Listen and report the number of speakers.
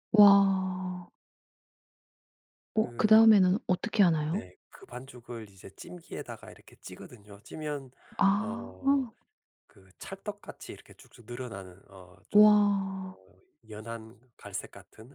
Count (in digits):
2